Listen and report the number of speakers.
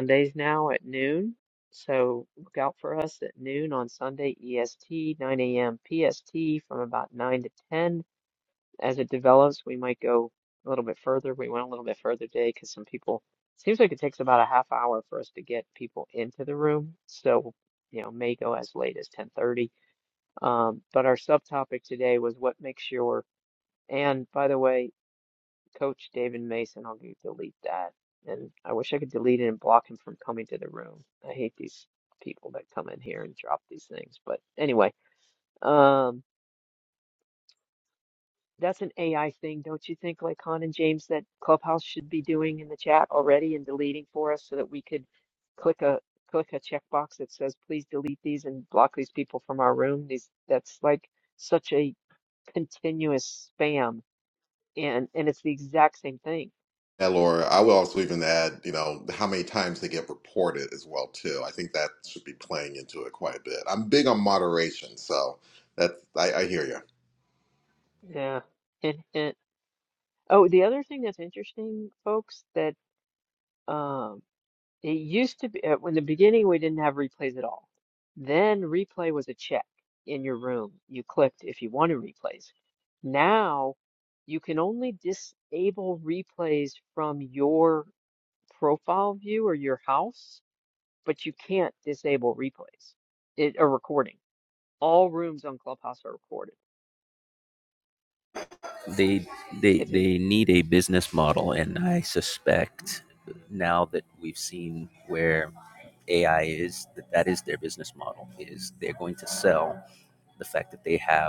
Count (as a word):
three